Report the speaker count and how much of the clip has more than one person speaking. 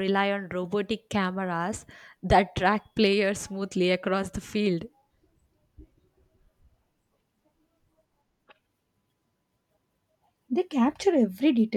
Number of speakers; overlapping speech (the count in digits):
2, no overlap